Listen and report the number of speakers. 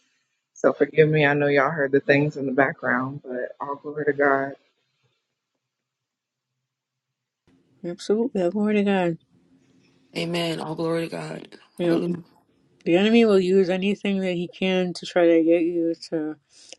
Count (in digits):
3